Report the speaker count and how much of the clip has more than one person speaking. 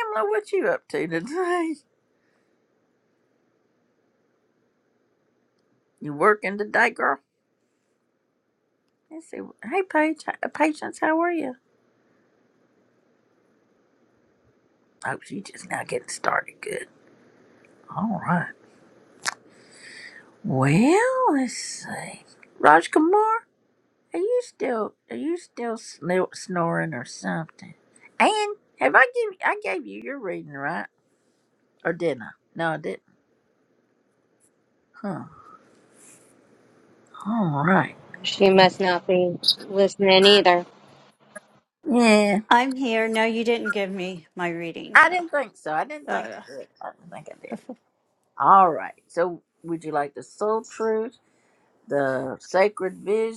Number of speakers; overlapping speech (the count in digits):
3, about 1%